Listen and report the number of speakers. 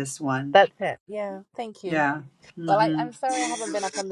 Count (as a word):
two